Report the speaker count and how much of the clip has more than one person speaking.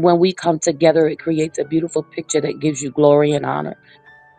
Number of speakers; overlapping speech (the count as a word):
one, no overlap